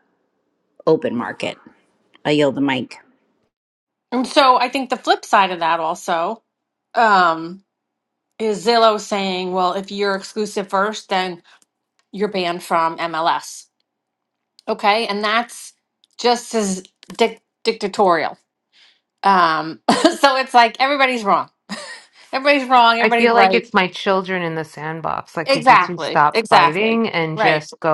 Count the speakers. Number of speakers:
3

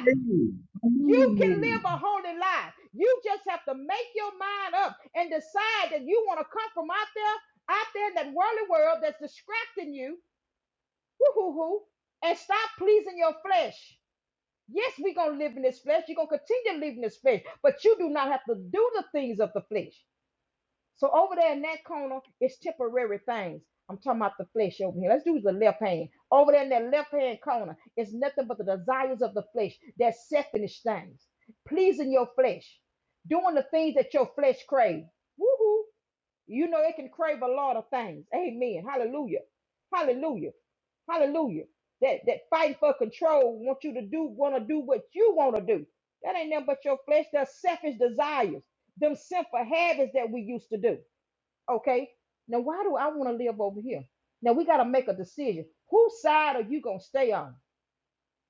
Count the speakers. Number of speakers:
2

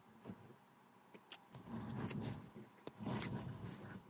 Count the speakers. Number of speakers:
0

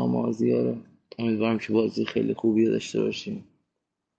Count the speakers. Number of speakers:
1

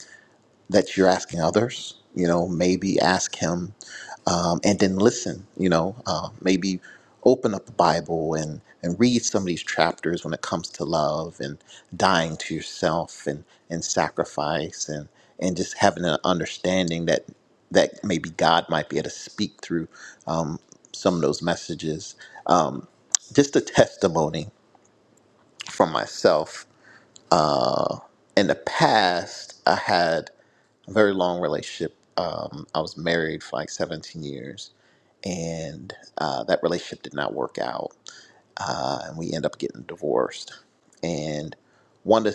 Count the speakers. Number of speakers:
1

